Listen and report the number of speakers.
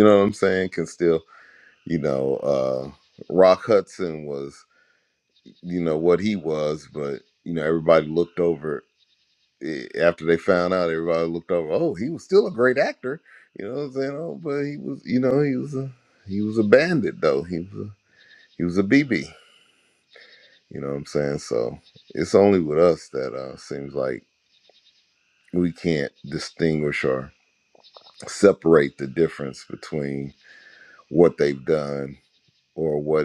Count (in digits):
1